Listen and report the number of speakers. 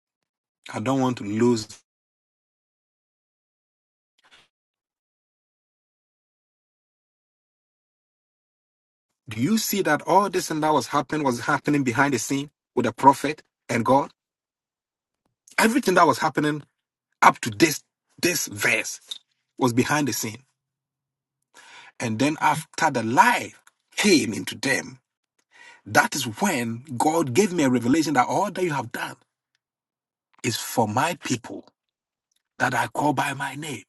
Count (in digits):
1